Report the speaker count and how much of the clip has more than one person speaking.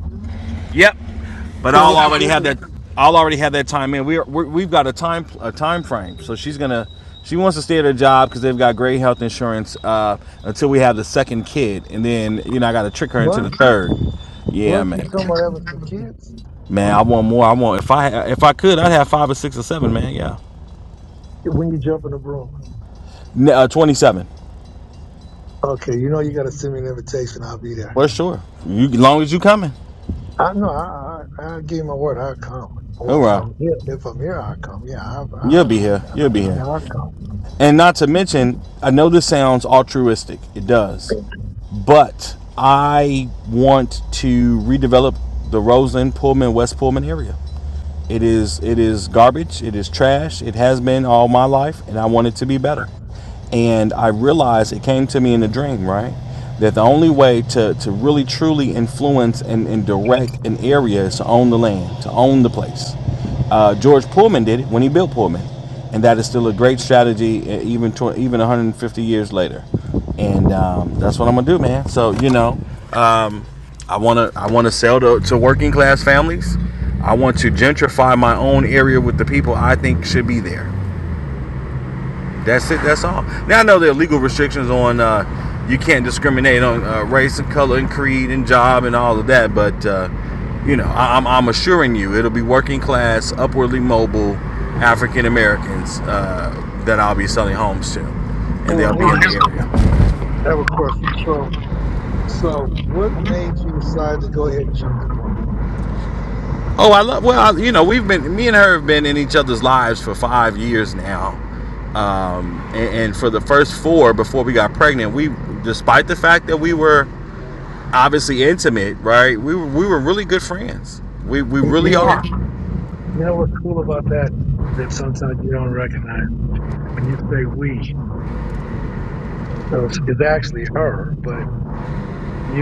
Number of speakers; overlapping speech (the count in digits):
2, about 3%